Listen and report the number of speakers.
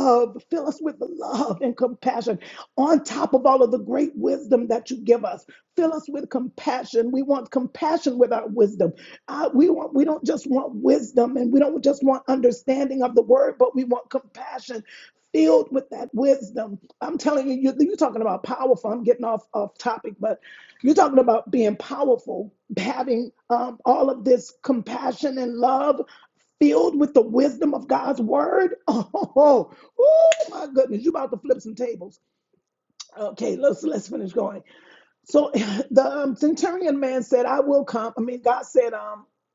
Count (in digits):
1